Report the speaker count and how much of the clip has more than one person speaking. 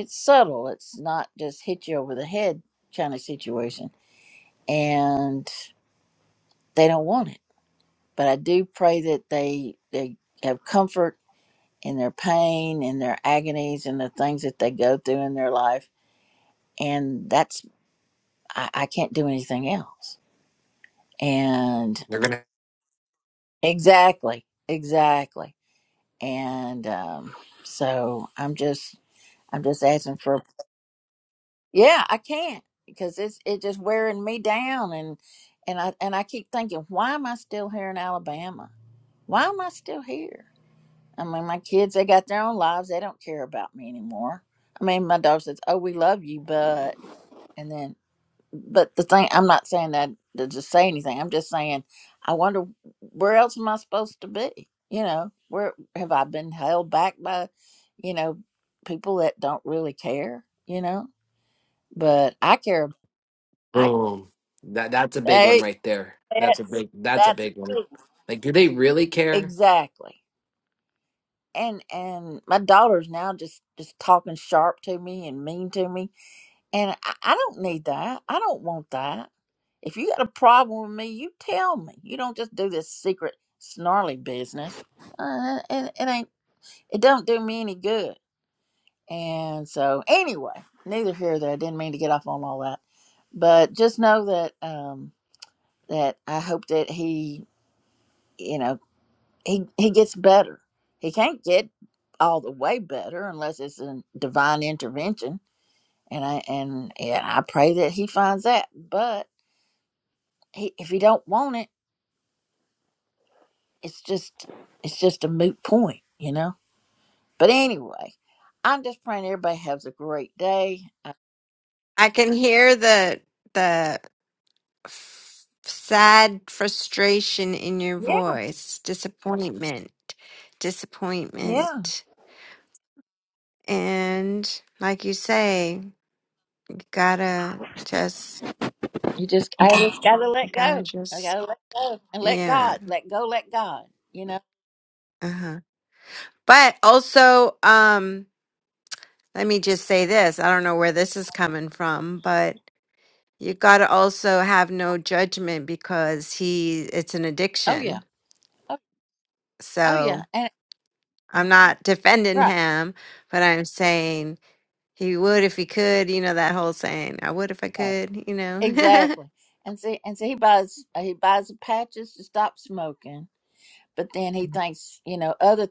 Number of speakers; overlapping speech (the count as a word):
three, about 3%